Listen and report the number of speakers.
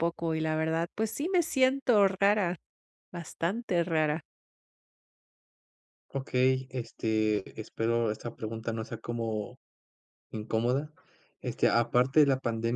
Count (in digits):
2